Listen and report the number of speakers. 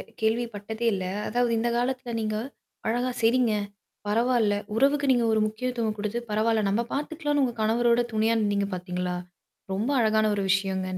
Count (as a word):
one